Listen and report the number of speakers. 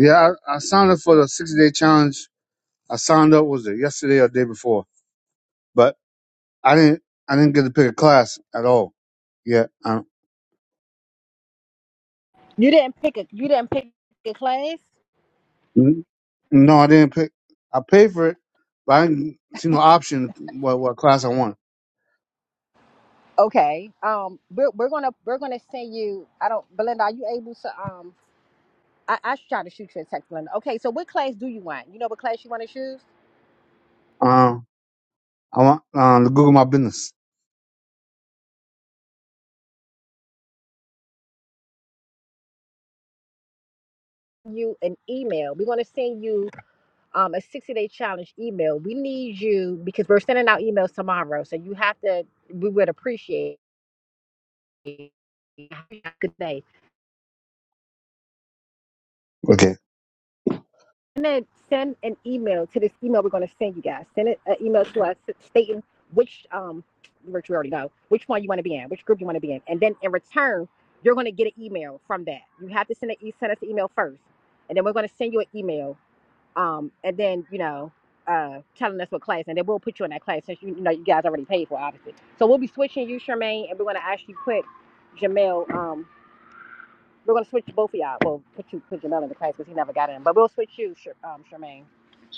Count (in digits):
2